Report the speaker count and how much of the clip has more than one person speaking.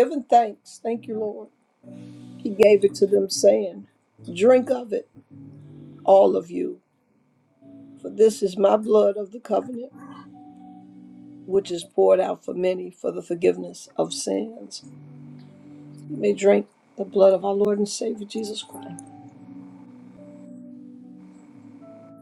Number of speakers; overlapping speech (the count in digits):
1, no overlap